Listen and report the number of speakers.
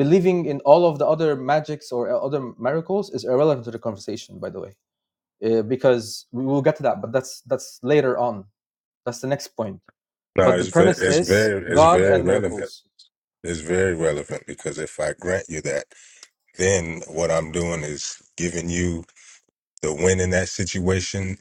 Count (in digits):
2